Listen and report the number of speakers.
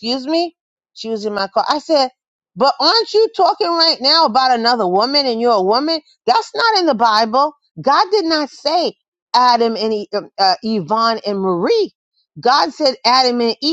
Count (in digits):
1